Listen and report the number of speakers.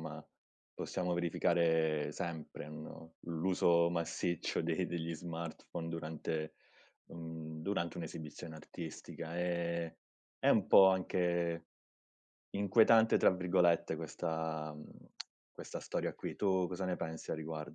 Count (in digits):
1